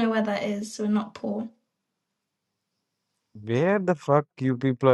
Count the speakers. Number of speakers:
2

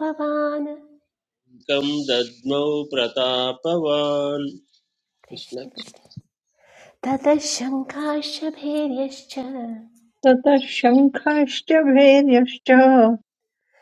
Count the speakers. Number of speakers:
3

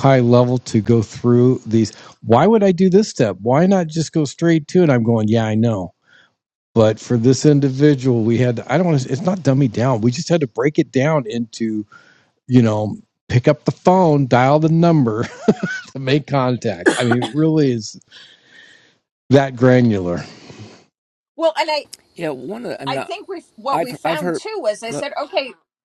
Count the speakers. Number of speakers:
3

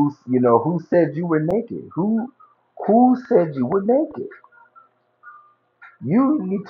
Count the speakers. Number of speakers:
1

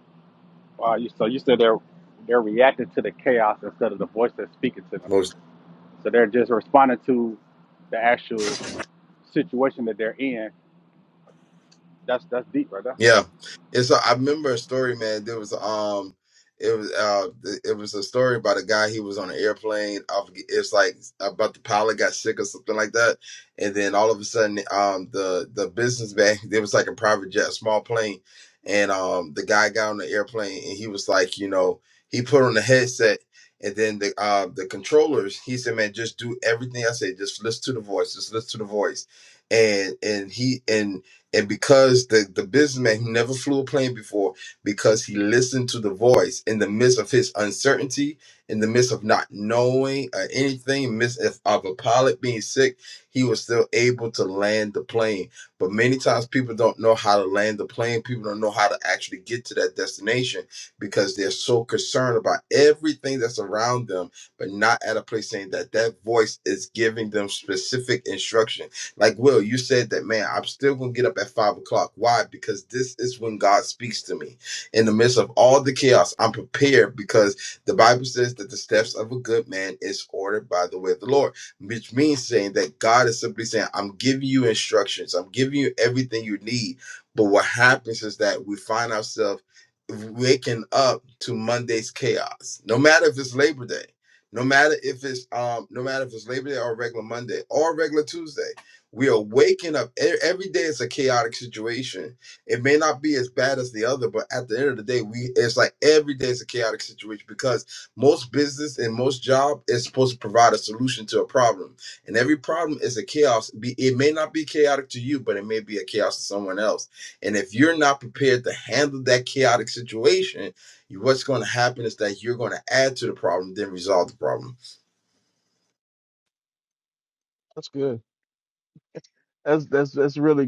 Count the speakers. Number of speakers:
3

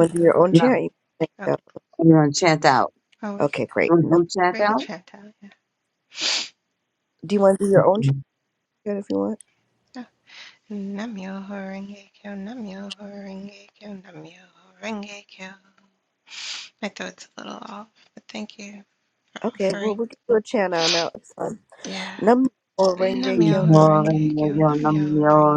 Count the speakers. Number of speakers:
3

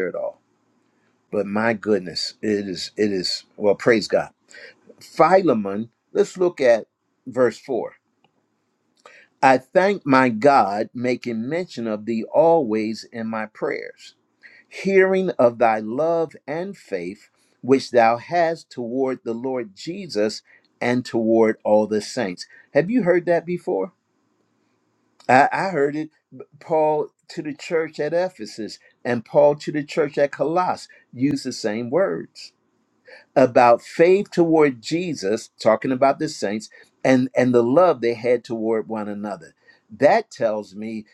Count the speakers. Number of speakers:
1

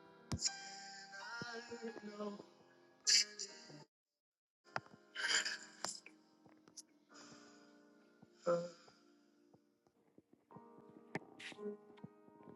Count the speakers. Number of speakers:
0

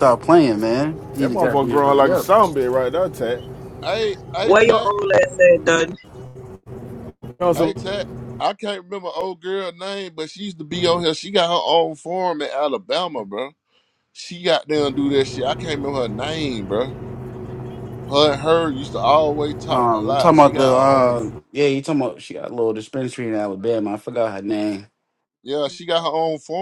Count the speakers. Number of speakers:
4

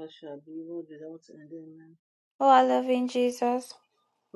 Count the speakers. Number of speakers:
2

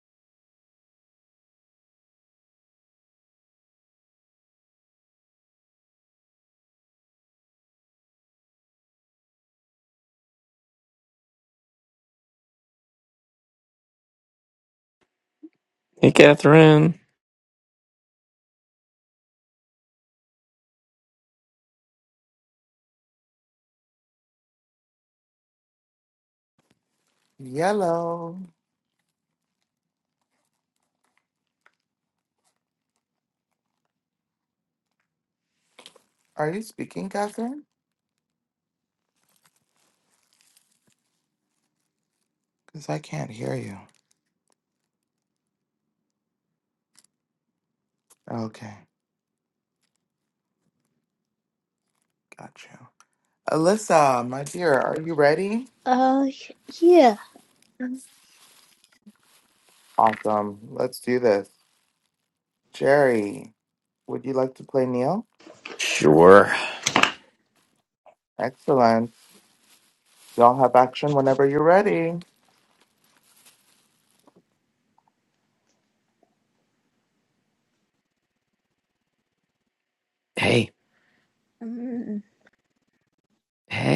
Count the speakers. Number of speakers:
3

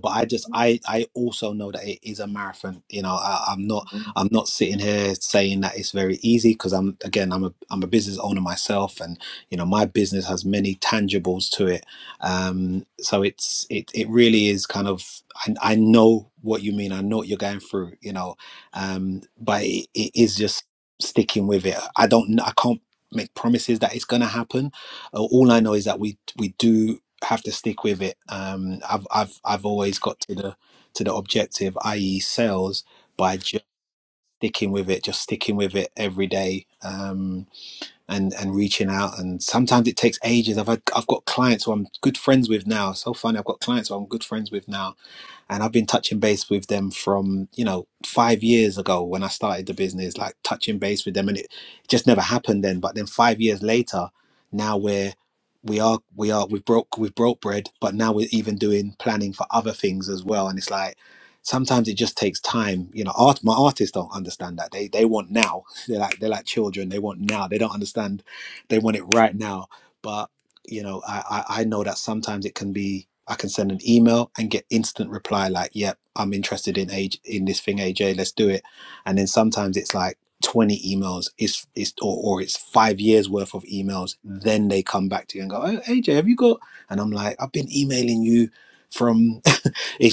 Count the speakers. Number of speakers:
1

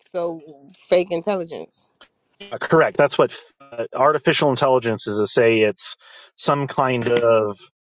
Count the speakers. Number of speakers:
2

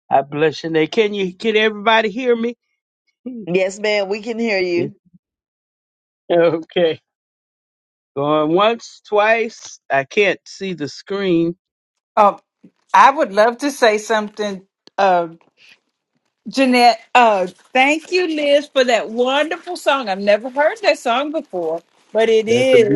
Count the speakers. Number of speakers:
3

